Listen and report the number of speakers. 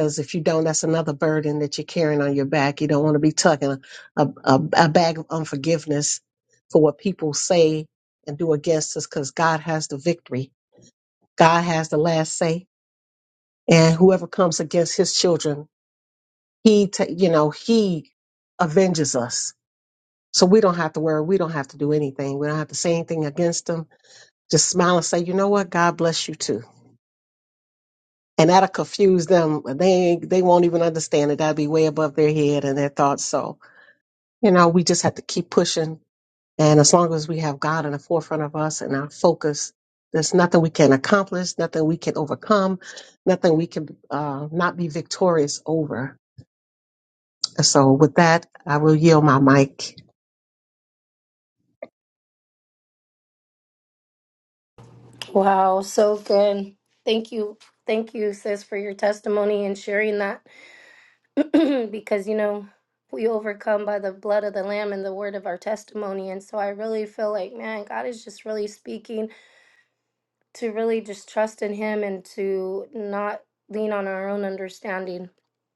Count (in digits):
2